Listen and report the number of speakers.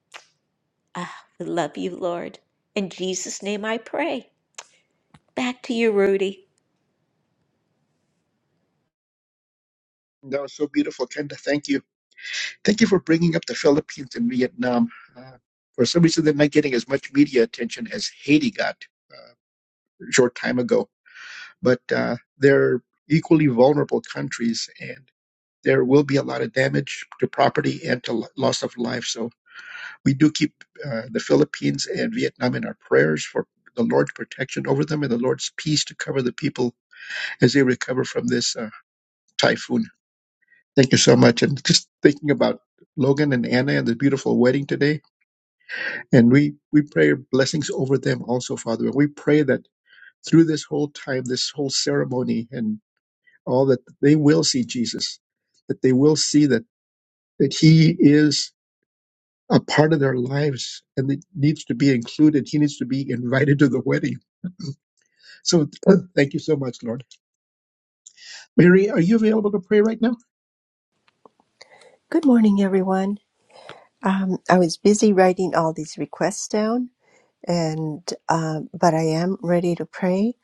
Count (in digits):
3